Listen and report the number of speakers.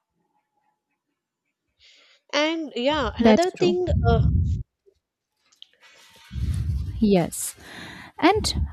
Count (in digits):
2